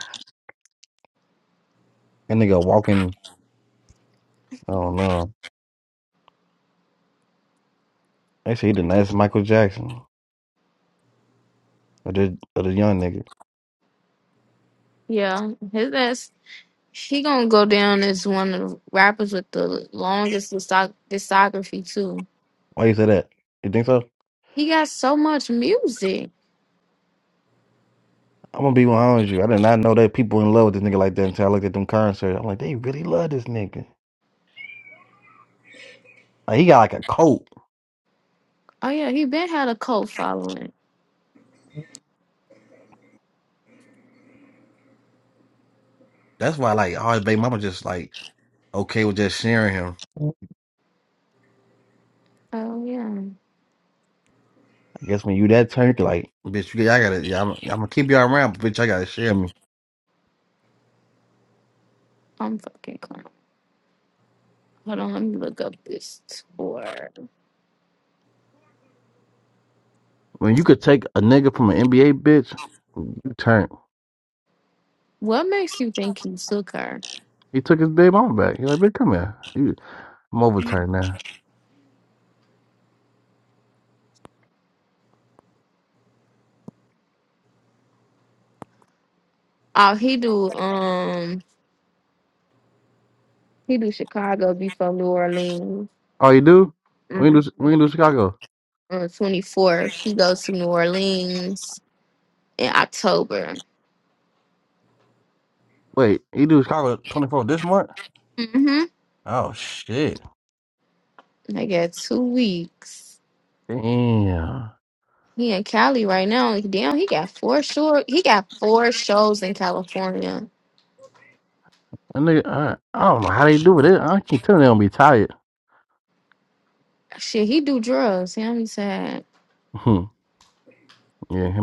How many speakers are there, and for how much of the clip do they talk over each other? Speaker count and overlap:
two, under 1%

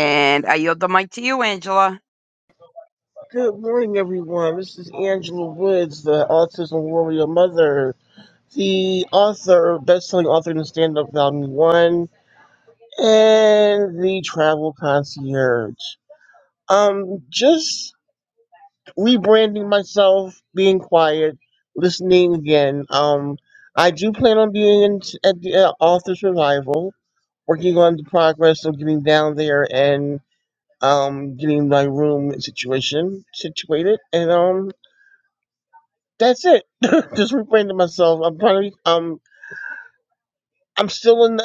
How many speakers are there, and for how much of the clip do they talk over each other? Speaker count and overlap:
two, no overlap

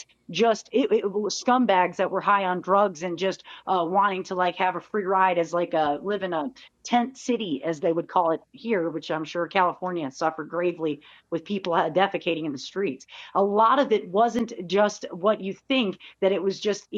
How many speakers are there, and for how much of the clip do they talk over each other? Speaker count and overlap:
one, no overlap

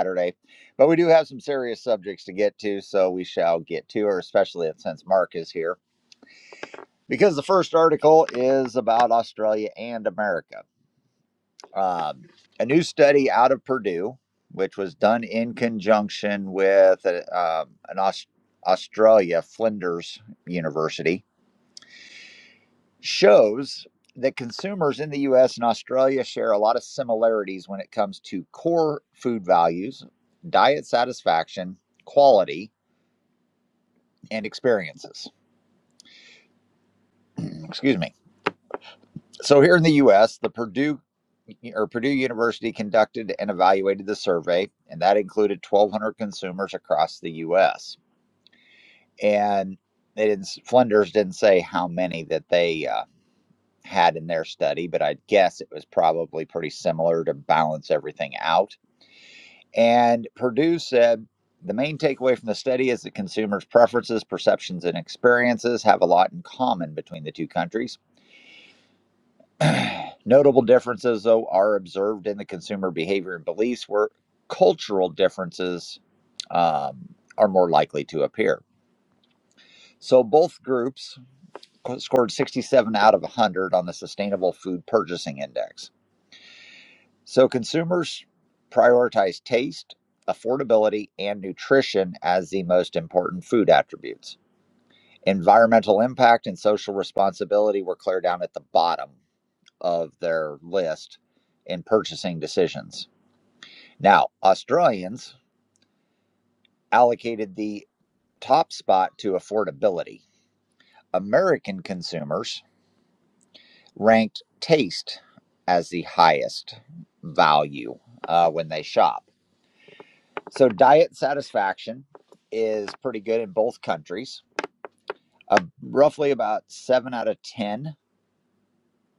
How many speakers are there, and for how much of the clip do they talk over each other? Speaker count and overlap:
one, no overlap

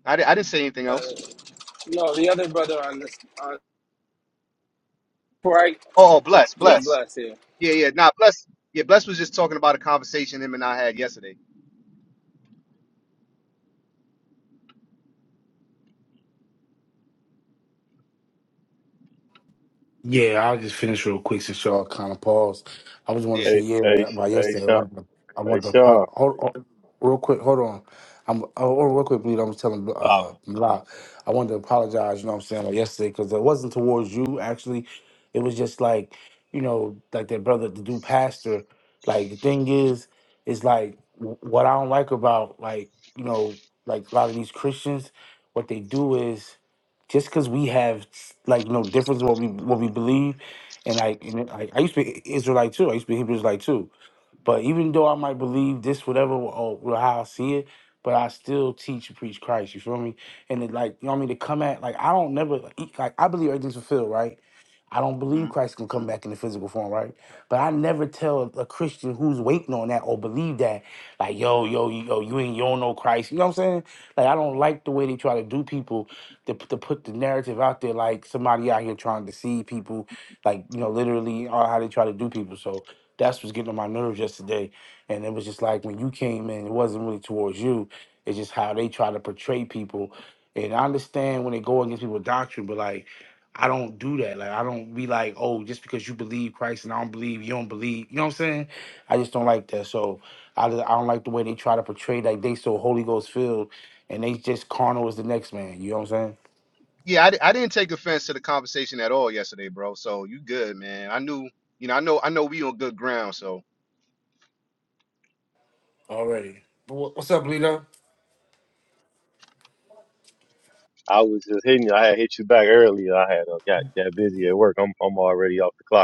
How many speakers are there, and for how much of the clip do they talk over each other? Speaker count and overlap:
four, about 2%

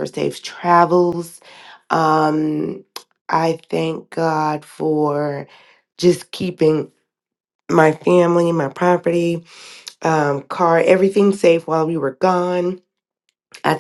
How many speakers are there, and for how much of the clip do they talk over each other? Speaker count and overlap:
one, no overlap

